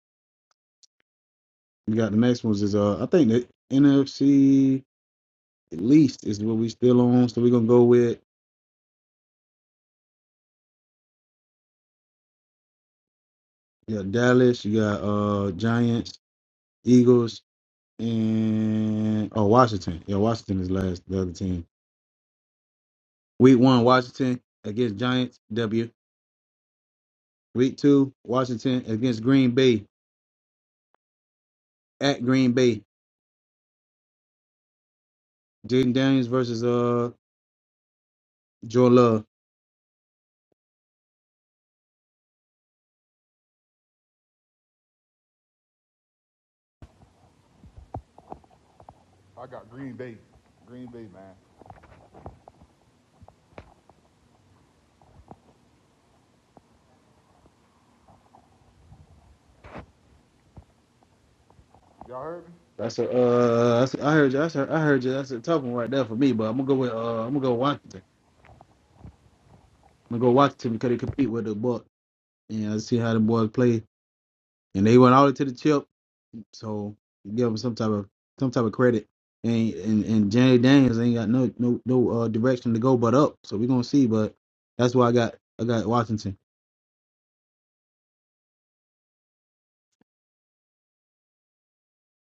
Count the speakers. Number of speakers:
2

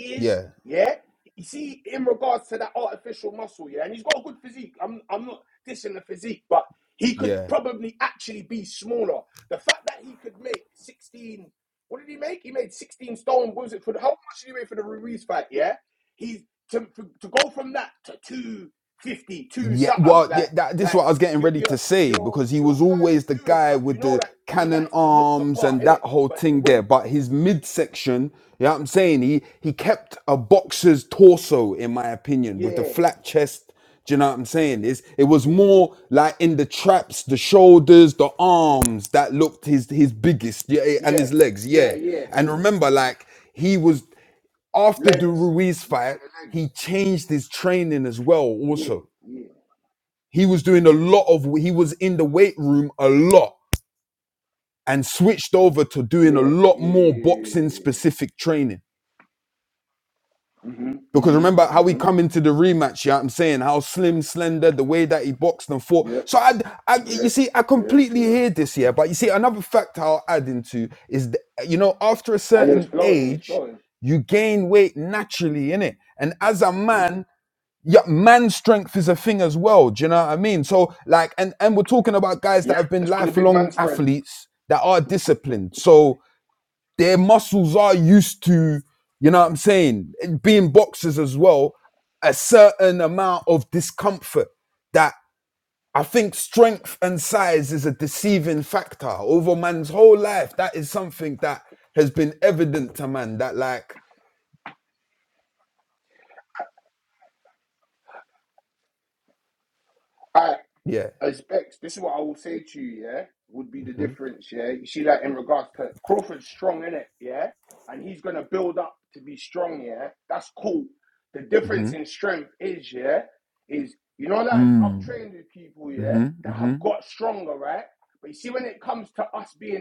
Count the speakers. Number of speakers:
2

